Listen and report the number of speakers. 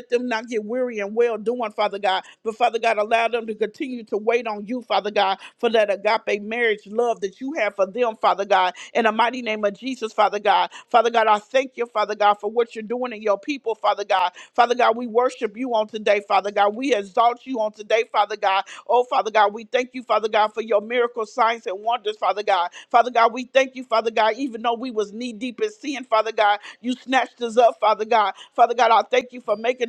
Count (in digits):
1